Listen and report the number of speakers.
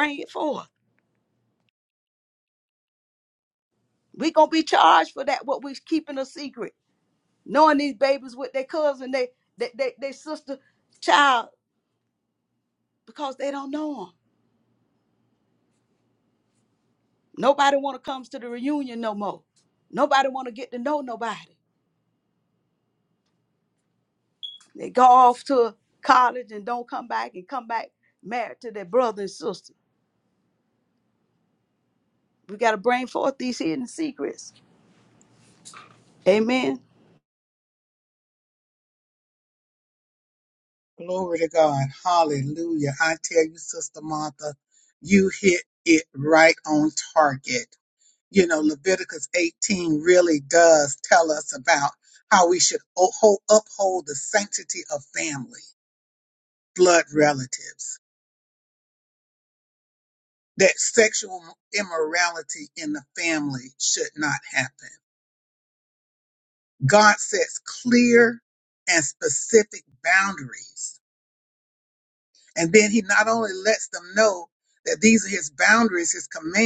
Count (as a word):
two